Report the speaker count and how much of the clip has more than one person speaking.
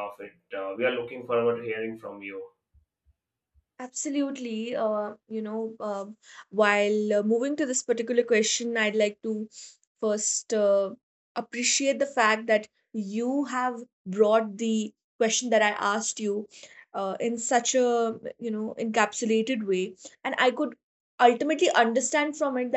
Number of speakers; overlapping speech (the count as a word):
two, no overlap